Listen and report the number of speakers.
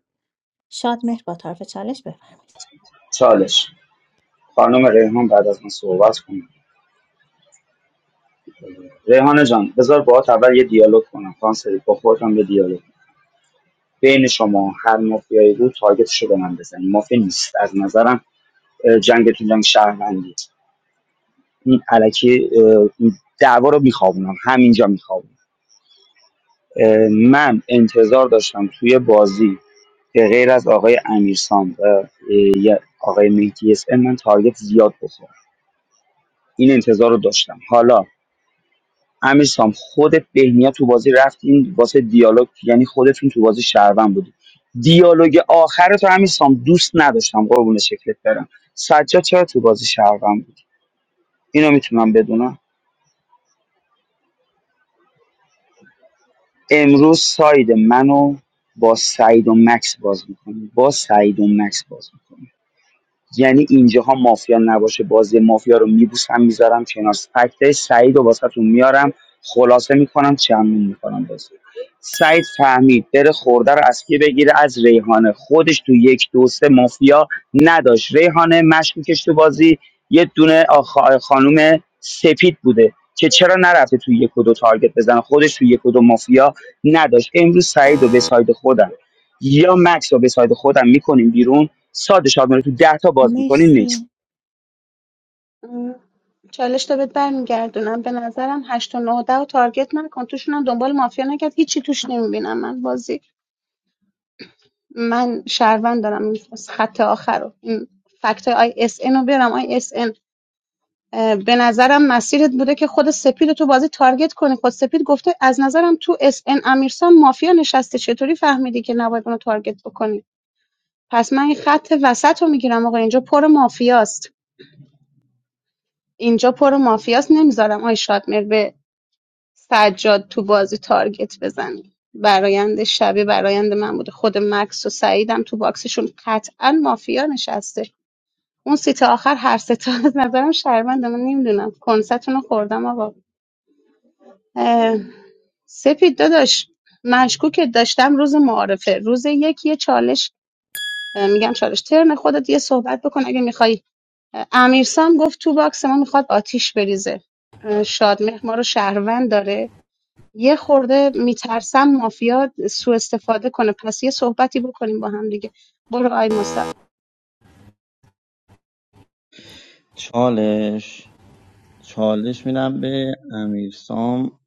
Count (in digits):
4